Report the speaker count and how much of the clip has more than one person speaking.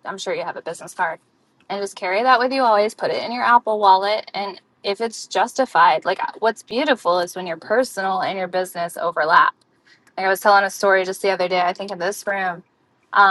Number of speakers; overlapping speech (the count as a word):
one, no overlap